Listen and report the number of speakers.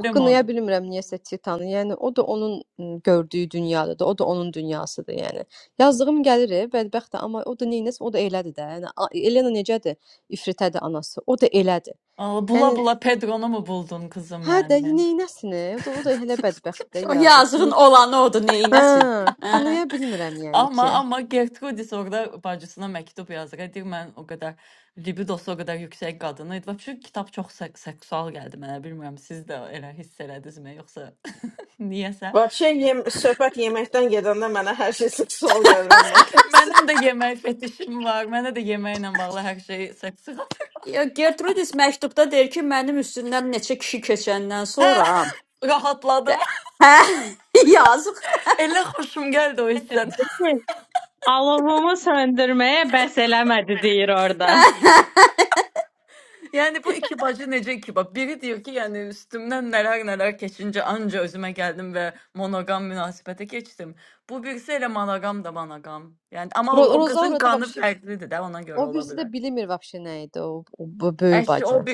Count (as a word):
five